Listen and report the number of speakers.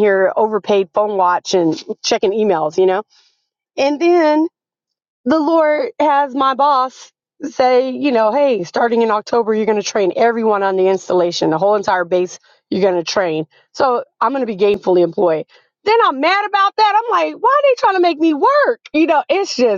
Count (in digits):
1